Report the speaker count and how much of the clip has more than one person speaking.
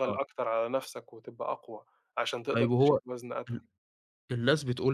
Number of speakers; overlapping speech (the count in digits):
2, about 14%